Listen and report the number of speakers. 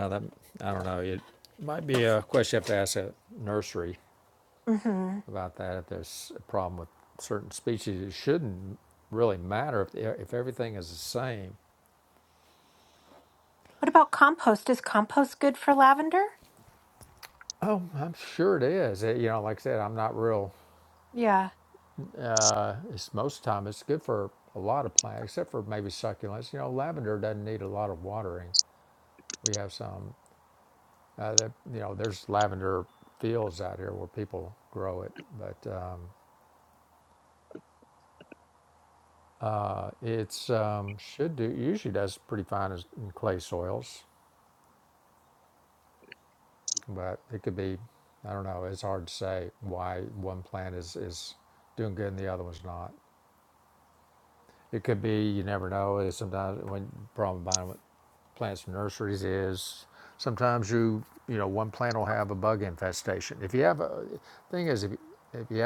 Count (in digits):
2